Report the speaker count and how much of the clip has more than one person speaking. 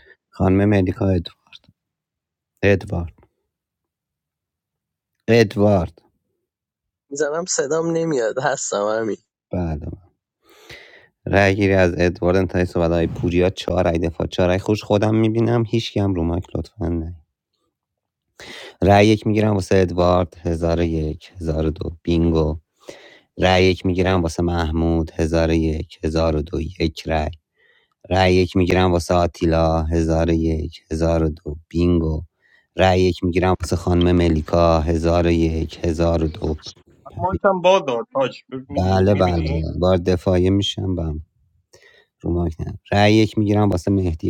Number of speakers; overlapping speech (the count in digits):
3, about 1%